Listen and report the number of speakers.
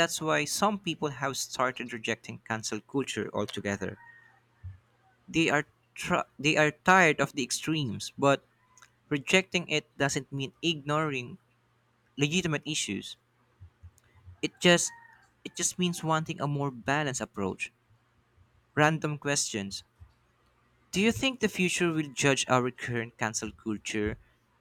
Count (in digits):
1